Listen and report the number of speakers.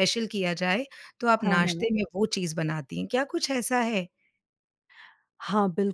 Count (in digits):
2